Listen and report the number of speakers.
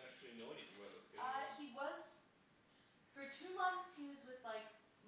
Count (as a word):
two